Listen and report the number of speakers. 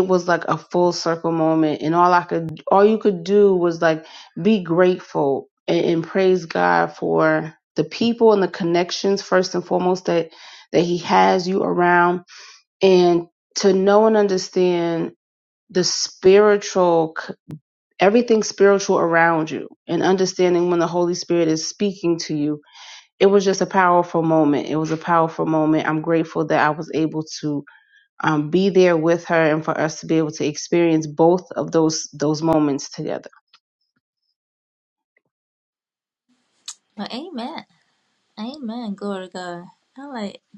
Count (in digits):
2